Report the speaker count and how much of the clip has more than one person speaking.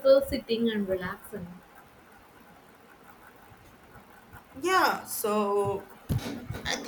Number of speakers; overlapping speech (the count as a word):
two, no overlap